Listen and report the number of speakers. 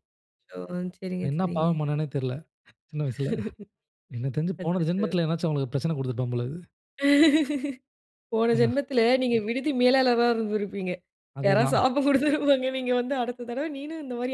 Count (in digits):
2